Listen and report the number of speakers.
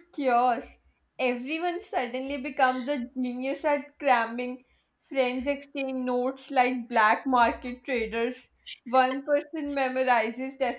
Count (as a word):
one